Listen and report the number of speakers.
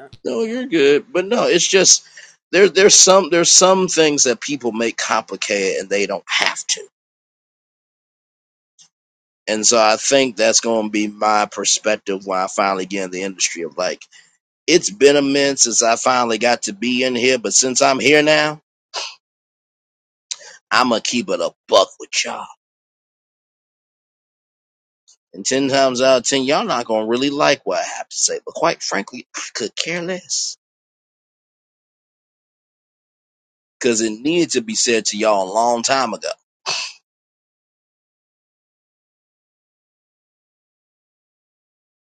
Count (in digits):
1